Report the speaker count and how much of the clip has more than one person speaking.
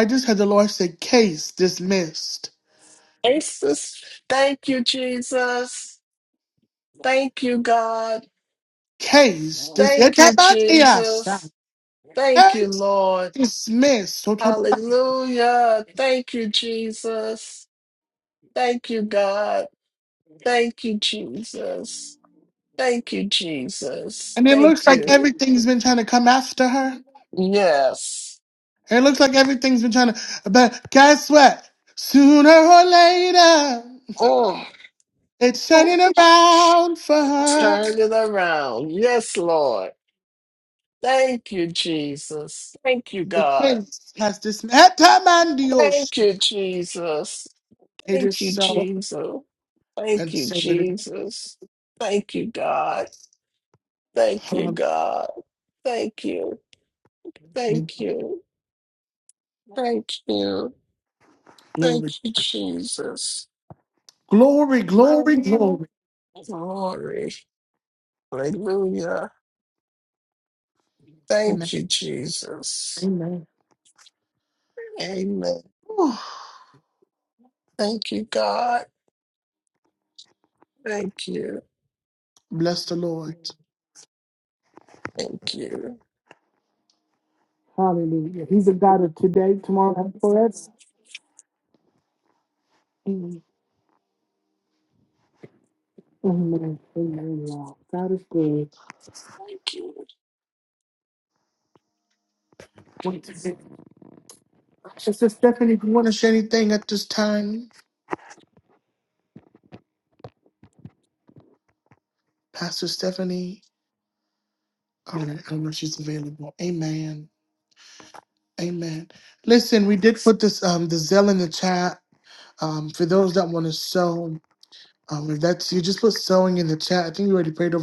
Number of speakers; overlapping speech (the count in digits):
2, about 4%